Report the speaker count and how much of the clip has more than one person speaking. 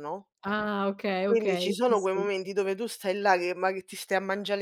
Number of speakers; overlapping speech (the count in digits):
2, about 23%